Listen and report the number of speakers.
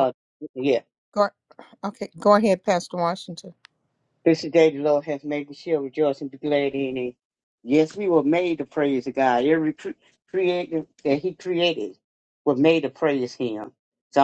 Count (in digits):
2